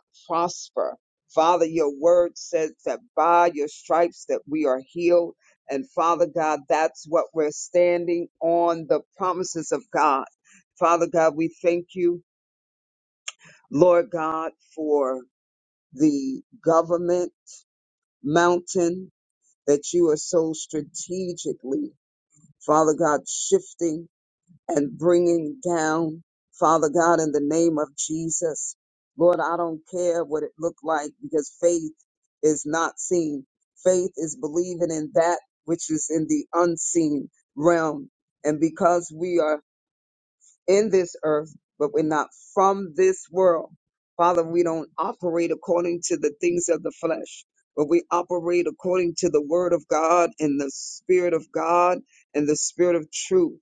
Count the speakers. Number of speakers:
one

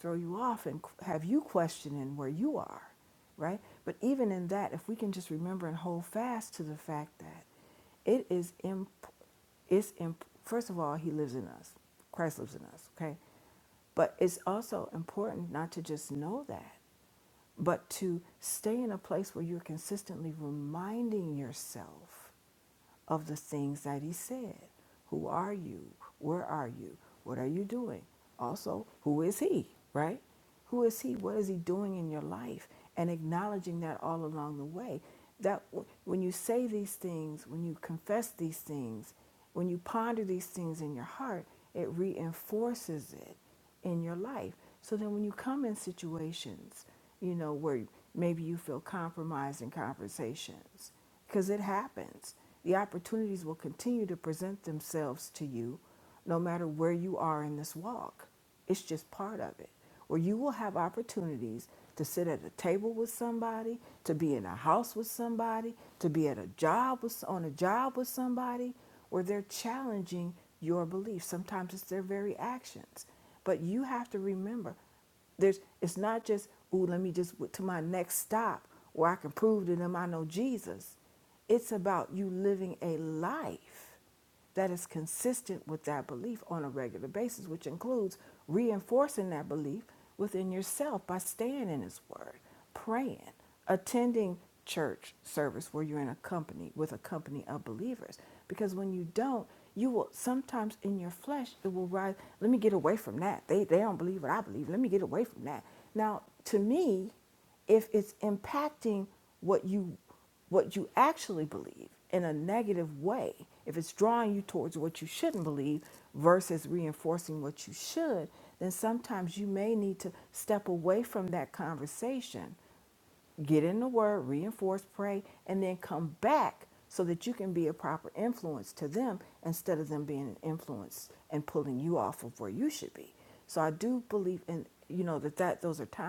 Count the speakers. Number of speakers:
one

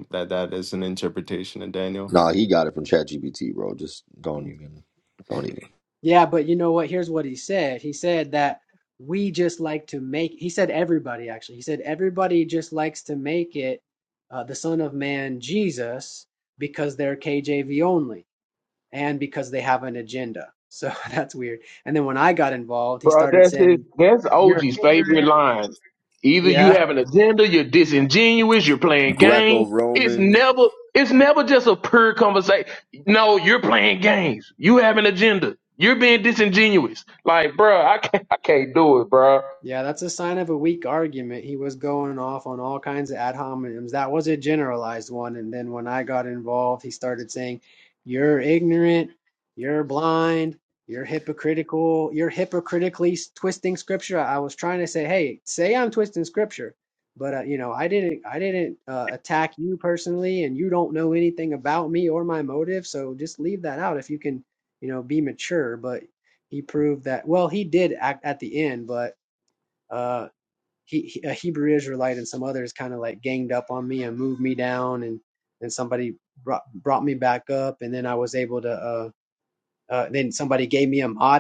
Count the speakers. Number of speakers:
four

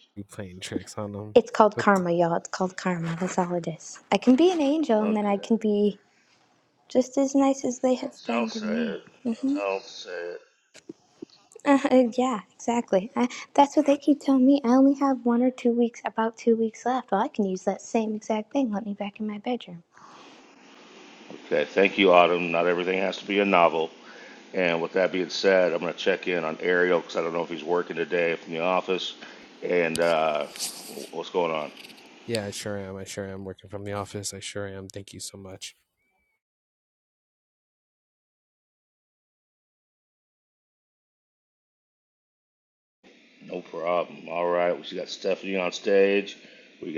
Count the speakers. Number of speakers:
three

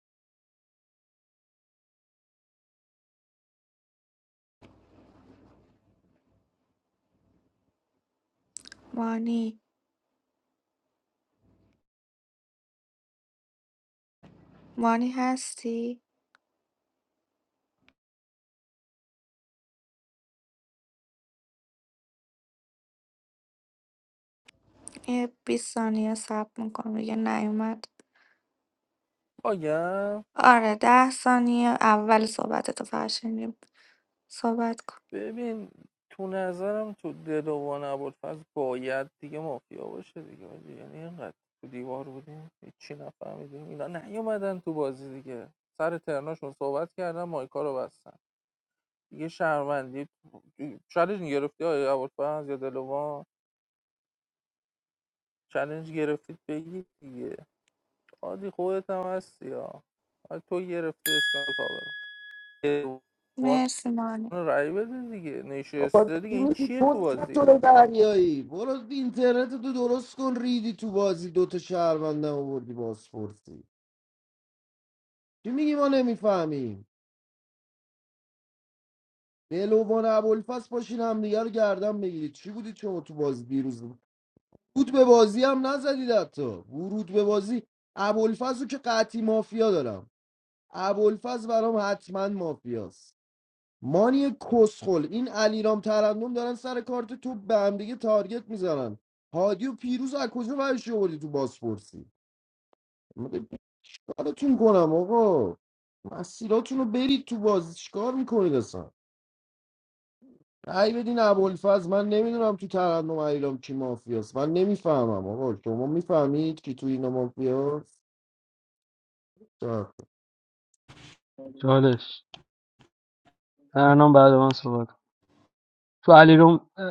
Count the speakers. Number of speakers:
four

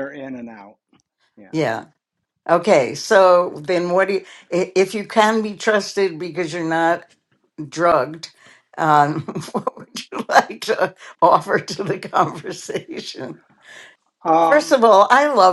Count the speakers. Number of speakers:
two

